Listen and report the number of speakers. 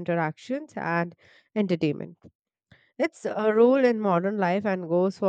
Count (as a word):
one